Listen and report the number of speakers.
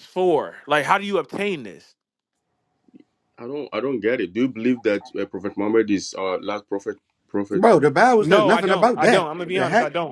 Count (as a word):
three